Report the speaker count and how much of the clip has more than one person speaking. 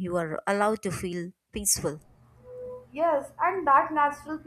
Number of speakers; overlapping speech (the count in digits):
2, no overlap